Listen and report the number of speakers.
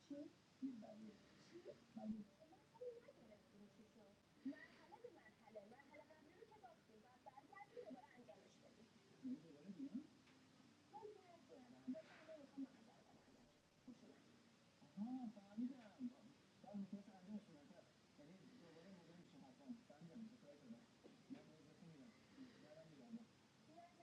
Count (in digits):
0